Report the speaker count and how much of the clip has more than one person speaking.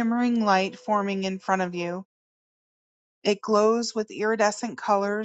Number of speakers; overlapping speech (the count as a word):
one, no overlap